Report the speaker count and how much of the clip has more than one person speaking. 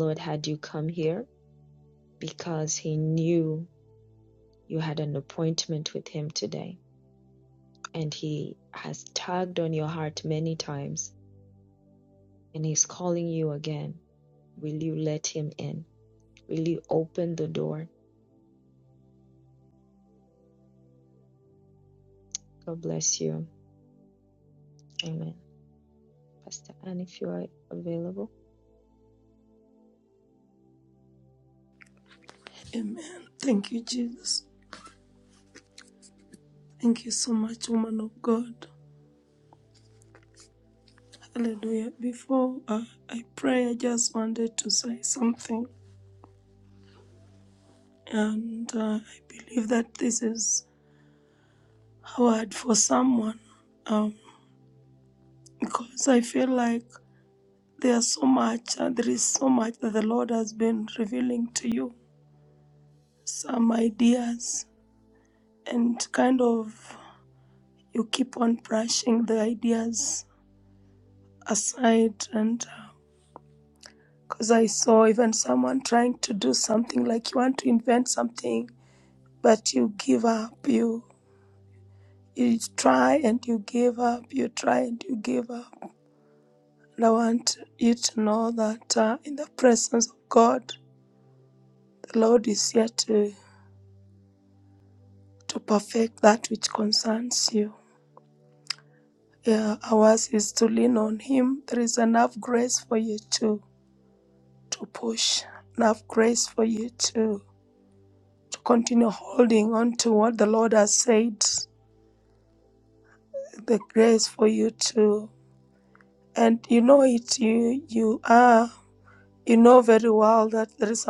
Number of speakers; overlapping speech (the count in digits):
2, no overlap